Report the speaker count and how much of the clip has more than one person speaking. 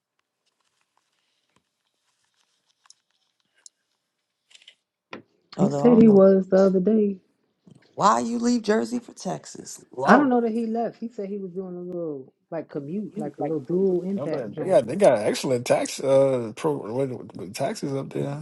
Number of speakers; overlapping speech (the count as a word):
three, about 13%